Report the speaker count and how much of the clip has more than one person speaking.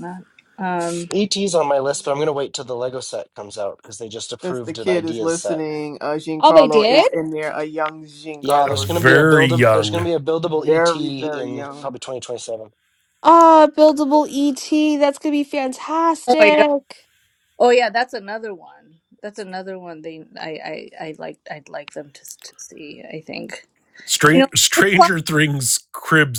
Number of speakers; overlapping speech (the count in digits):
5, about 22%